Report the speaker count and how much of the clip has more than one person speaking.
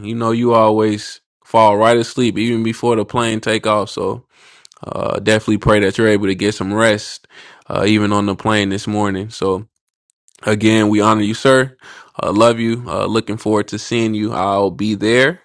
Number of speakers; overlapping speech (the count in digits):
1, no overlap